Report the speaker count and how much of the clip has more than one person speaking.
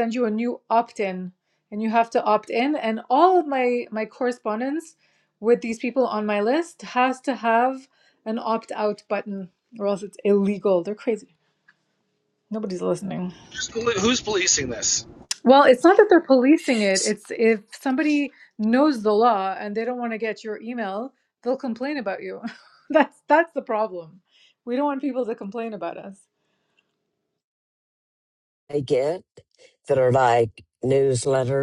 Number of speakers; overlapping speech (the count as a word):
three, no overlap